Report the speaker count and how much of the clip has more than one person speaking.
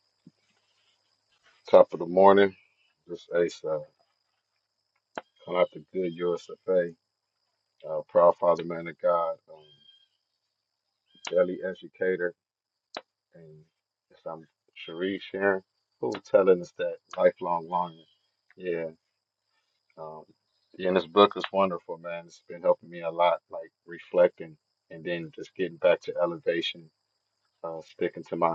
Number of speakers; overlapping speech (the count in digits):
1, no overlap